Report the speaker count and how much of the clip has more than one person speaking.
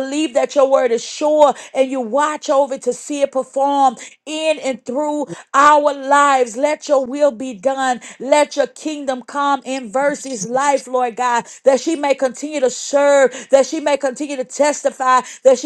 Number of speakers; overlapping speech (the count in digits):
1, no overlap